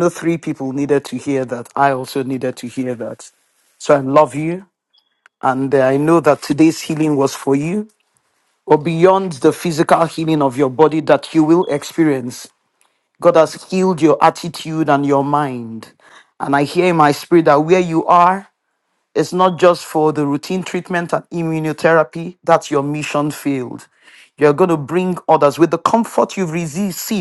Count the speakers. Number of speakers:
1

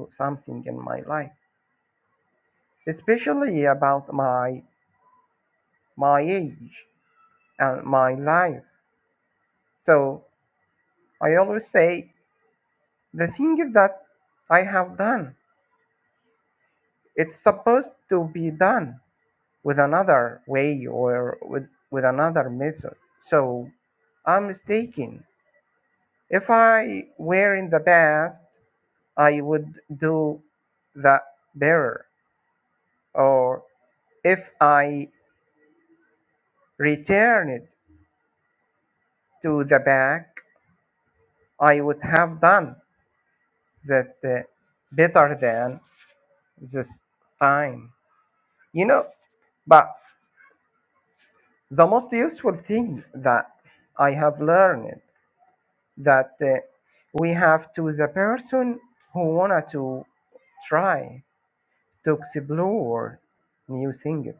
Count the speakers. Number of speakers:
1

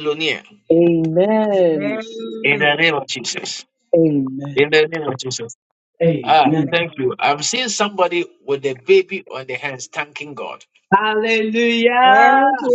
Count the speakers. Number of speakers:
3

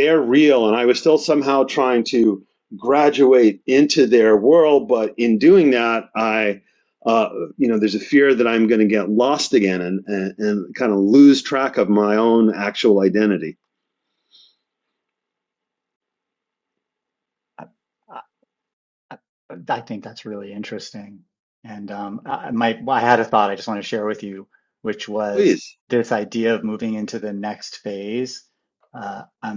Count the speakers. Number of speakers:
2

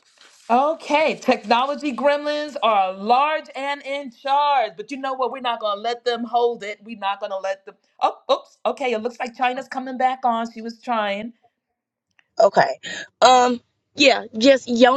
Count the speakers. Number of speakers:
2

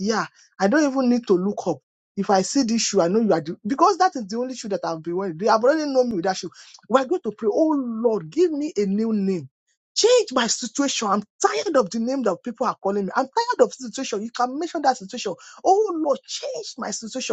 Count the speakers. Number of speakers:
1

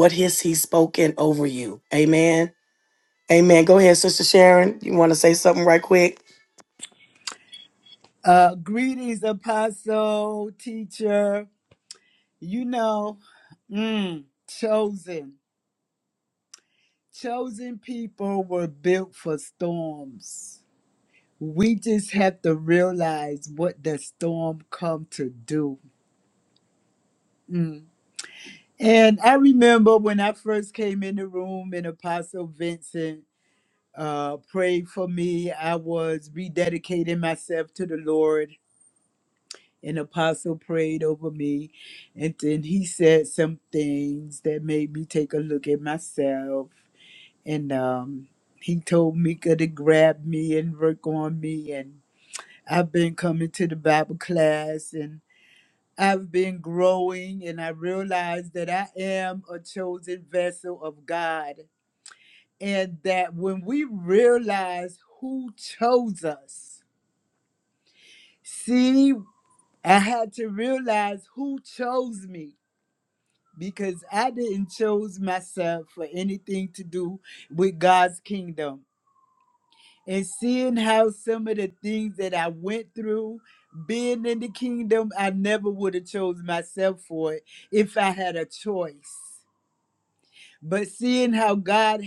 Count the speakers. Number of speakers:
2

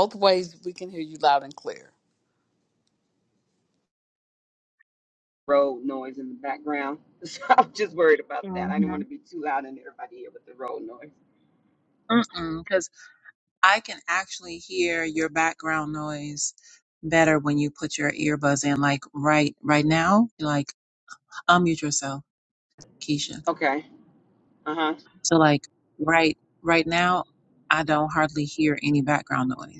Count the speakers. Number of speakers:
3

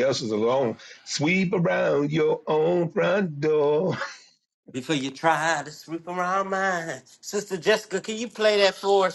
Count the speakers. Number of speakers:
2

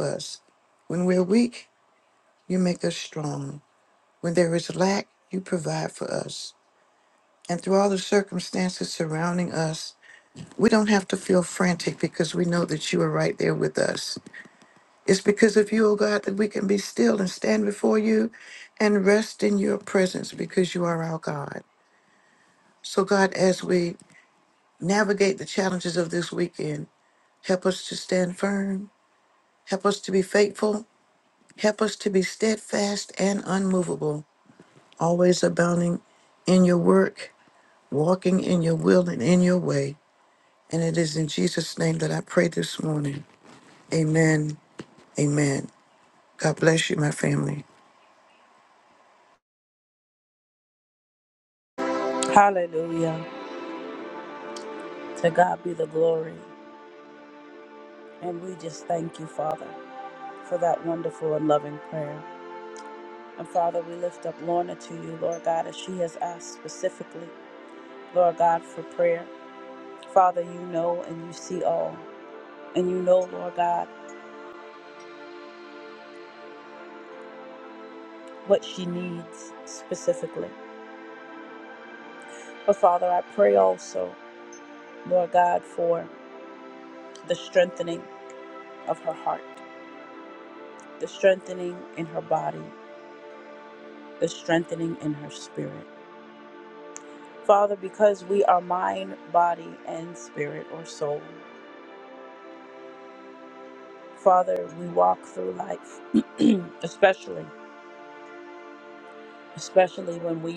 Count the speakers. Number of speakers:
2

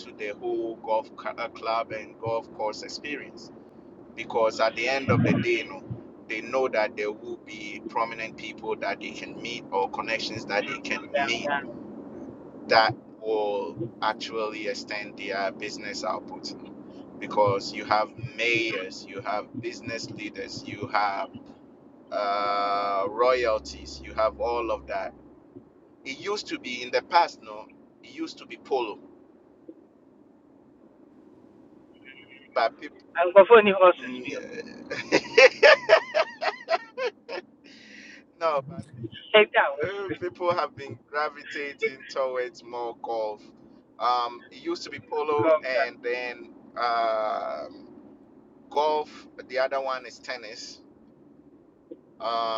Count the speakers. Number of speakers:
2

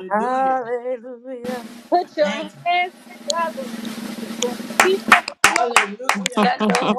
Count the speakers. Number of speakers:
3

